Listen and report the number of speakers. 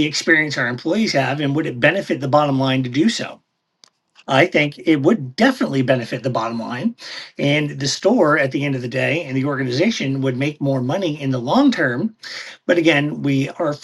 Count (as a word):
one